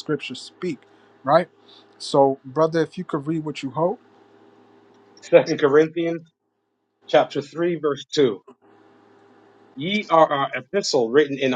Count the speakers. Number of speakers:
2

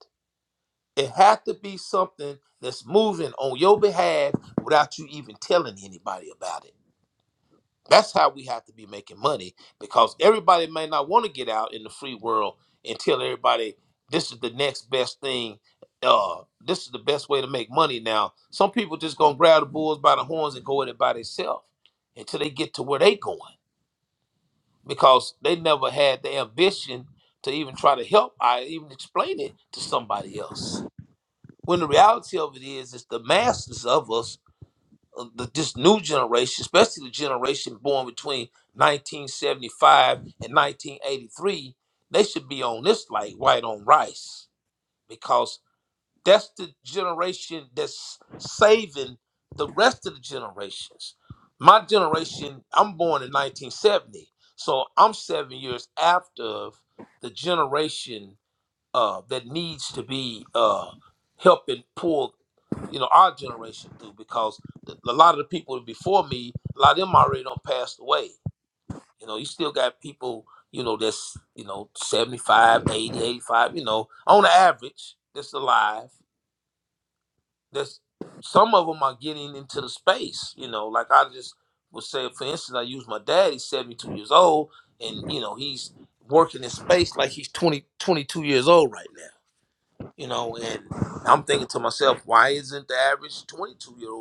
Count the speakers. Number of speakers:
1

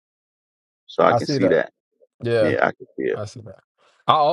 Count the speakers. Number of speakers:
2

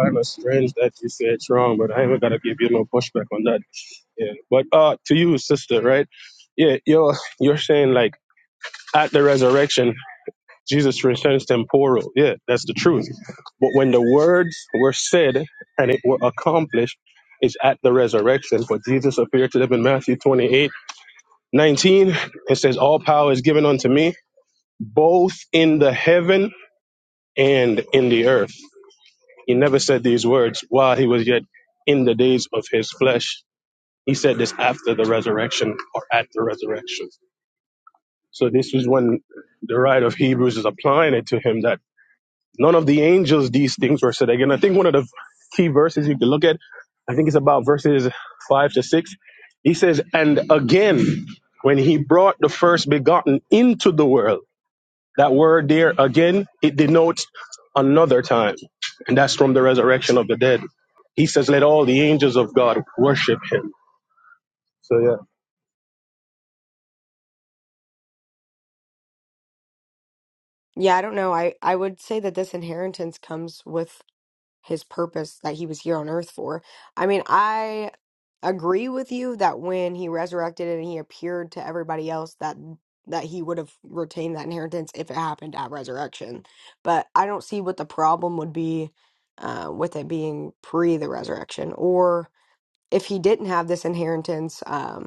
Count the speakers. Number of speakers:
2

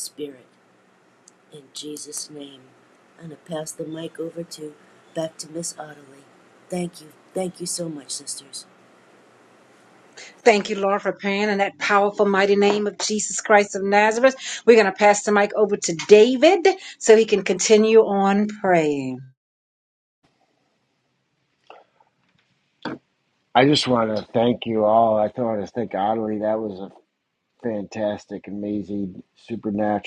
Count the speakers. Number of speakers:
3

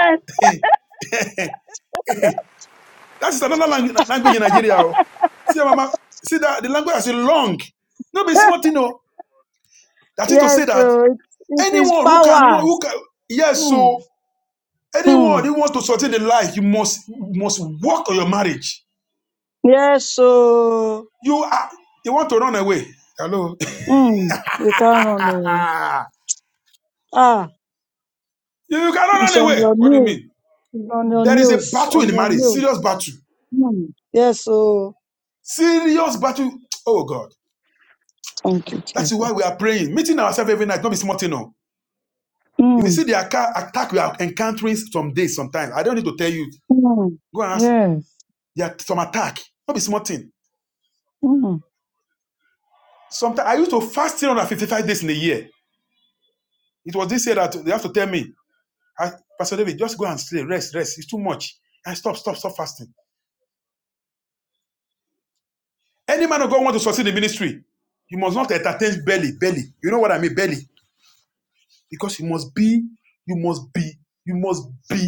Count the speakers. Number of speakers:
2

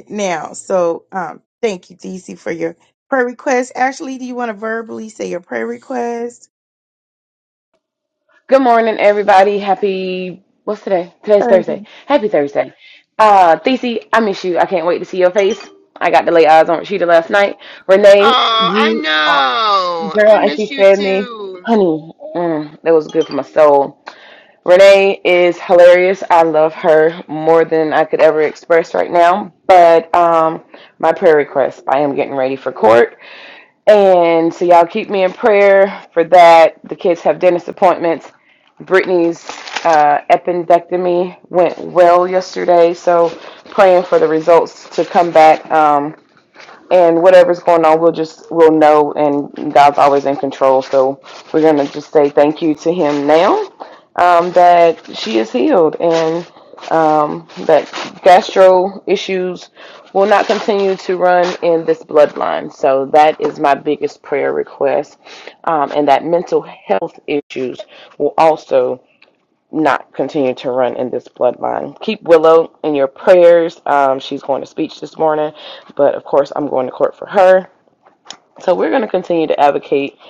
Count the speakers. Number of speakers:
3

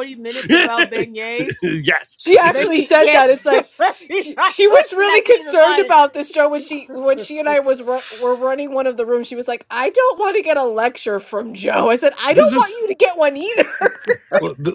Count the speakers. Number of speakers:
3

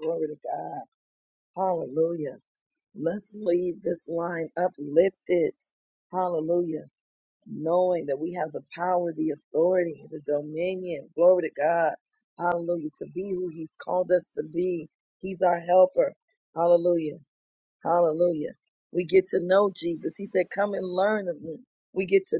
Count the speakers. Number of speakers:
1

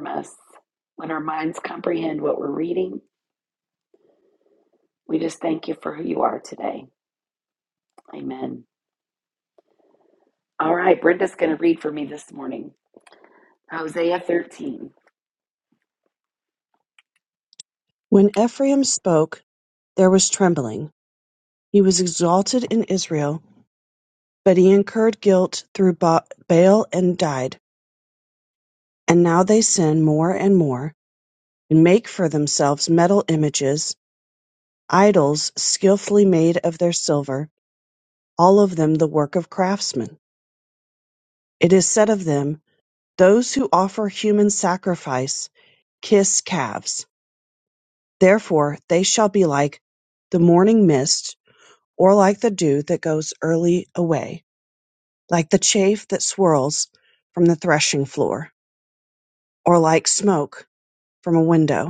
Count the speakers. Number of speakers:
2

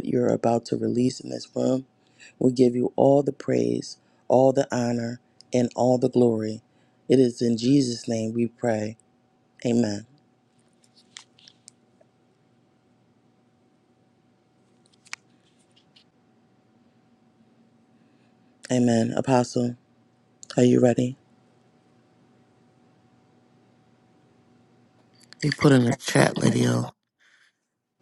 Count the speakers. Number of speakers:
2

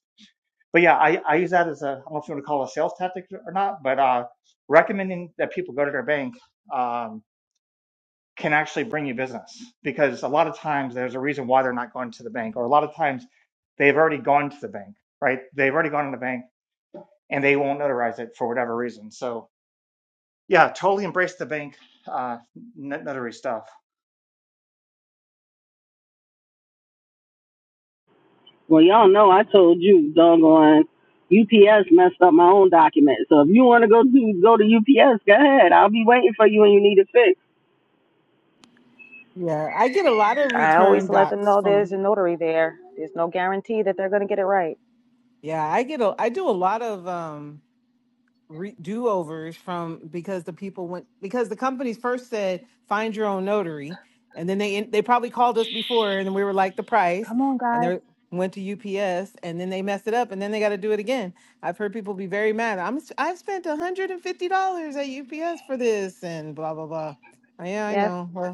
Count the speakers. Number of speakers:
4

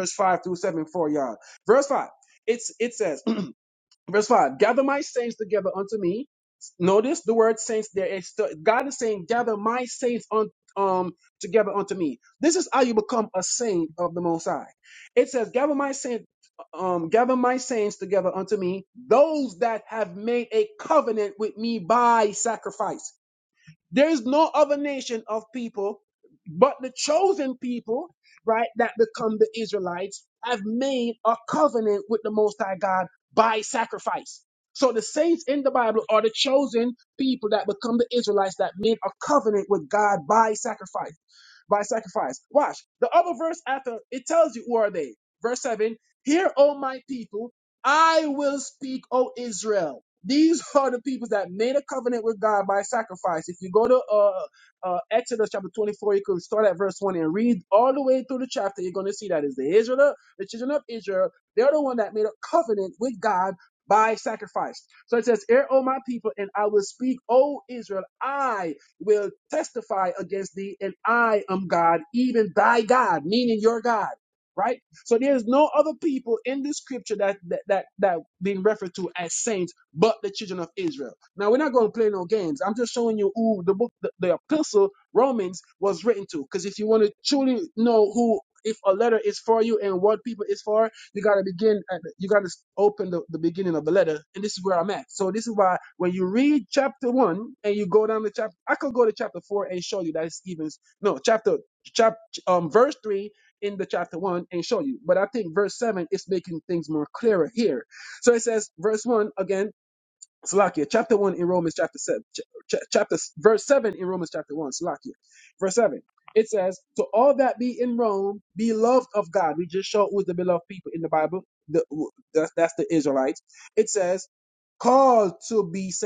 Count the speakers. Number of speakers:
1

